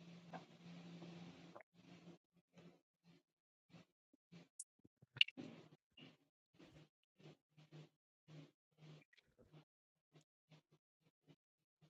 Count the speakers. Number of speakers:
zero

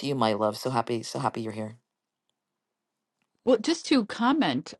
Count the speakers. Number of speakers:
two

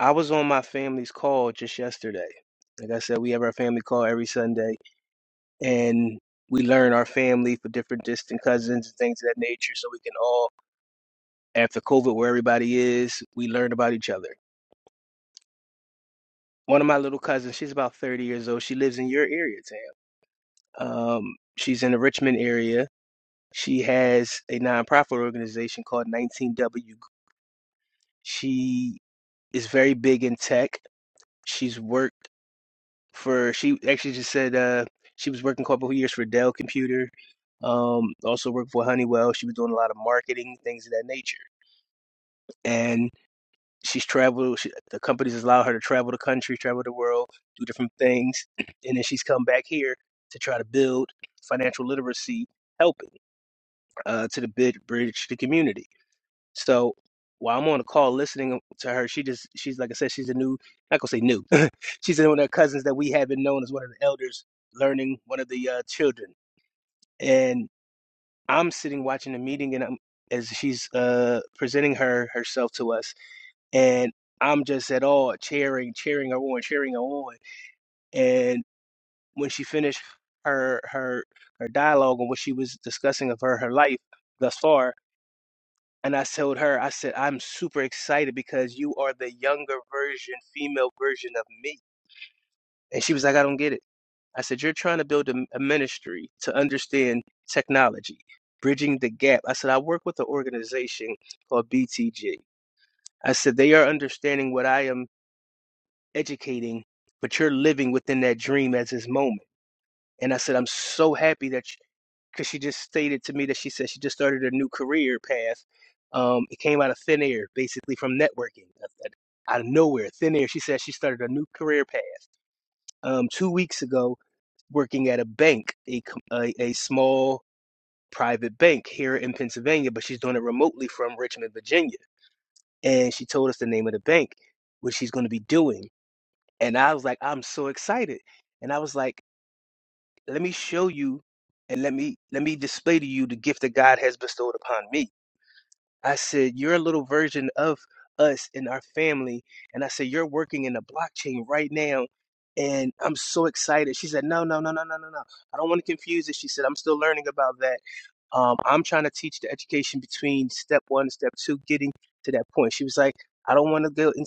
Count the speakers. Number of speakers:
one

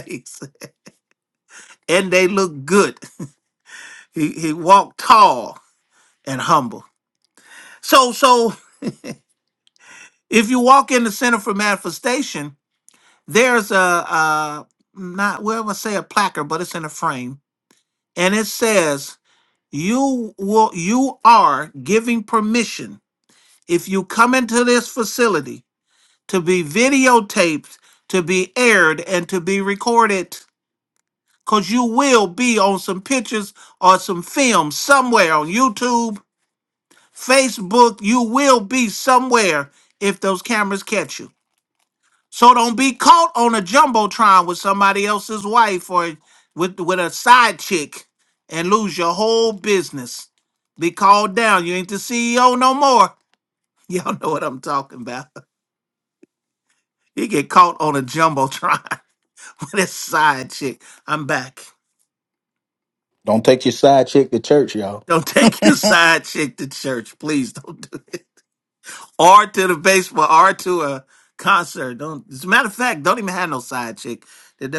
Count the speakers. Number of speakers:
two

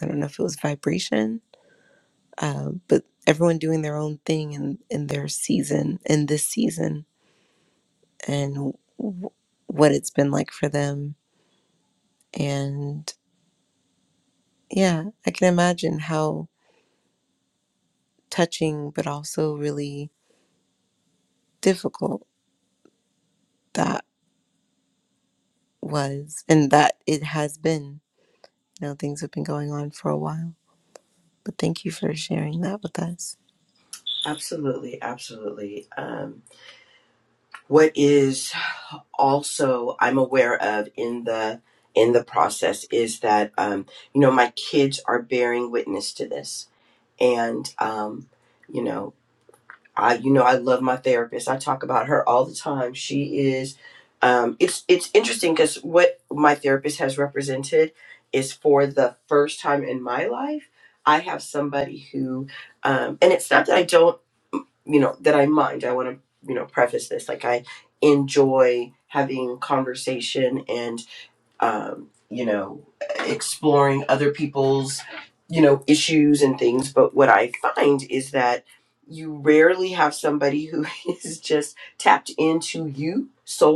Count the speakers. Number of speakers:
two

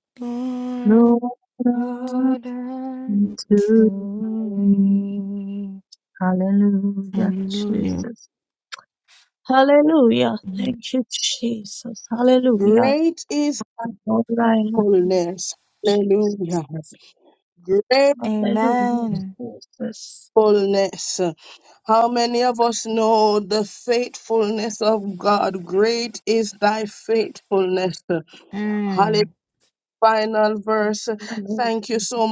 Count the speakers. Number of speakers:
four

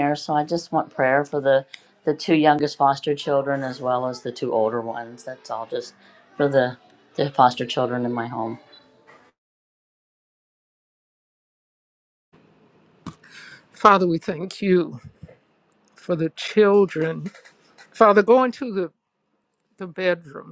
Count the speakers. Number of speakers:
two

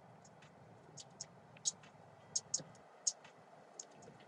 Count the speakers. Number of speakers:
zero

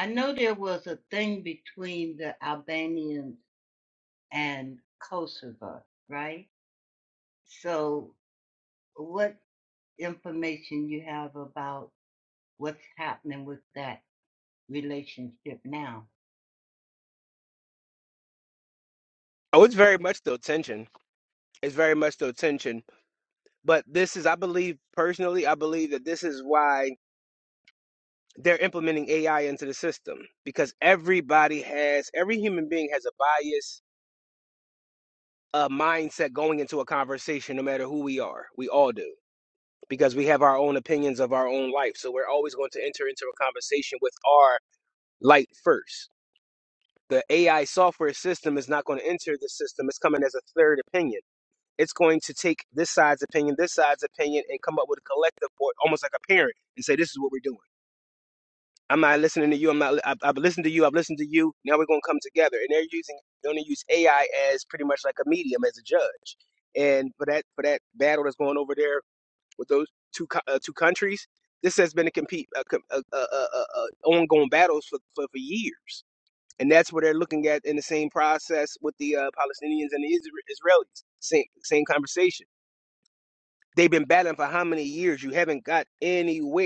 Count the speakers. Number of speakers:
two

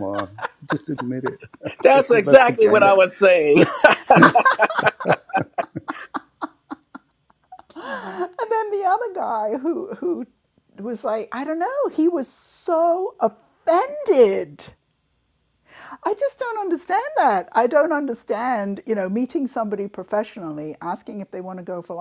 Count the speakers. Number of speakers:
three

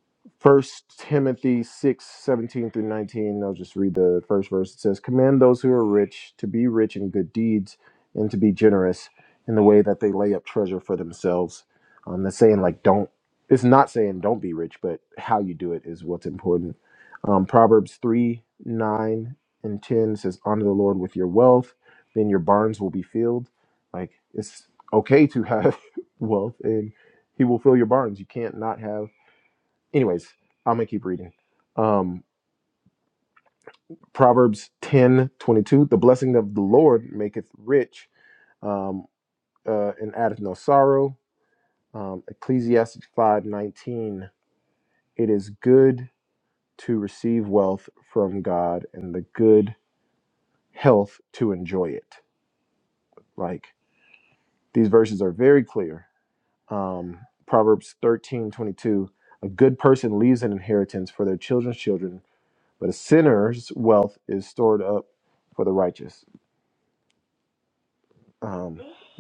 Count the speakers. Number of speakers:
one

